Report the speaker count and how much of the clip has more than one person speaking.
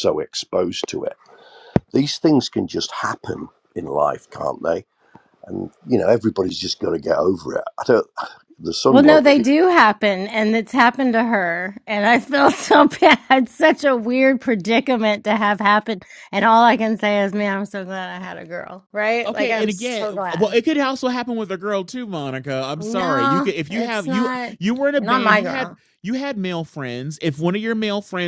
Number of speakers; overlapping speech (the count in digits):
3, about 15%